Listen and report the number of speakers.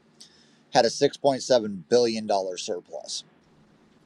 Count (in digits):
1